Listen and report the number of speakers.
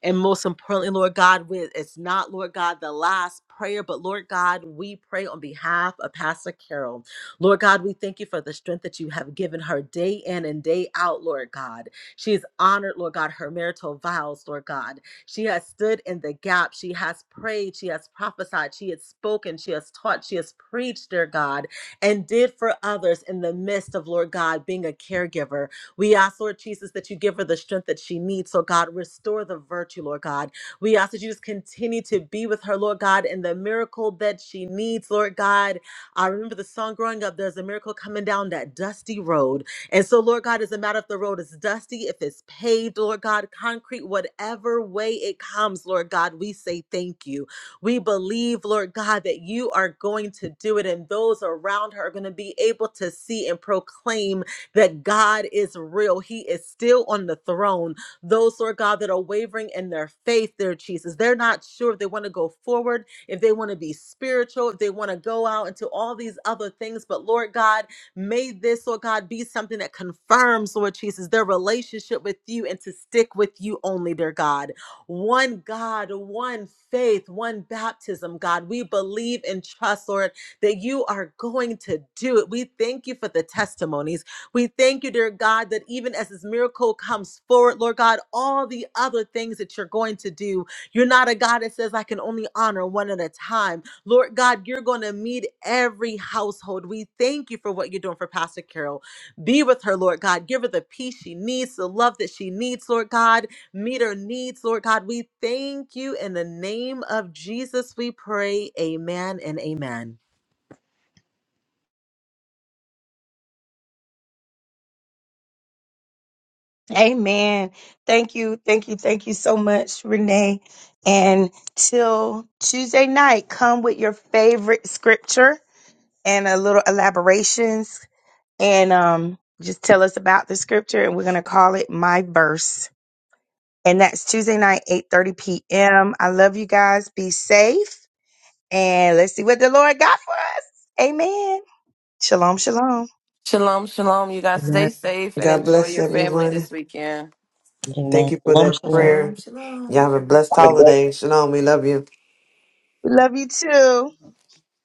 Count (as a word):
five